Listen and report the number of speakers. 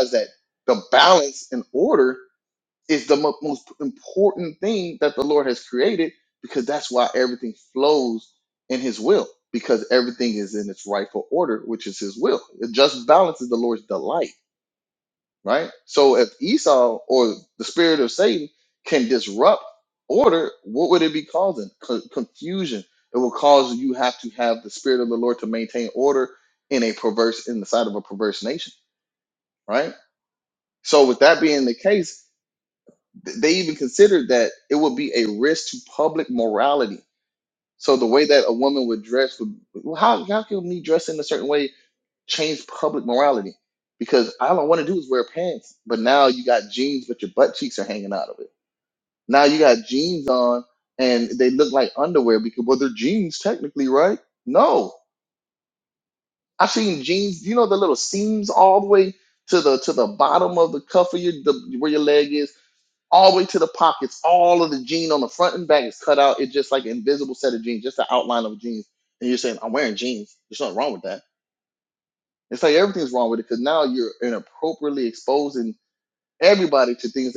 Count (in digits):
1